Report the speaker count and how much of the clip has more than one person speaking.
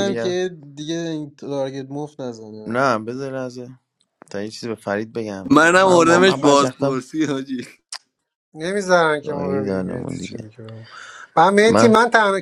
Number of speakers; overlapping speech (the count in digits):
4, about 28%